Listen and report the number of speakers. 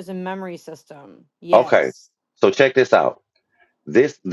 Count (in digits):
2